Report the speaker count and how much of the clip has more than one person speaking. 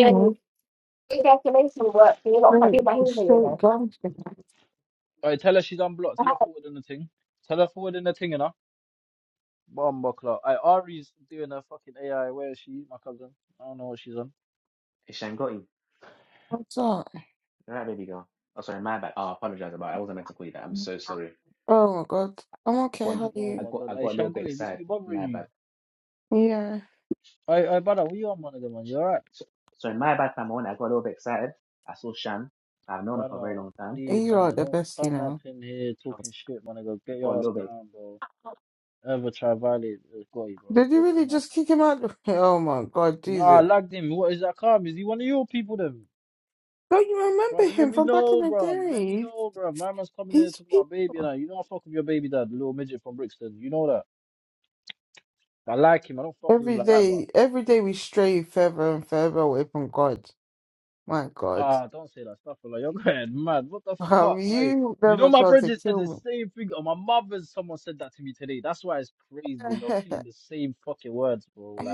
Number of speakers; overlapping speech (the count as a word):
four, about 18%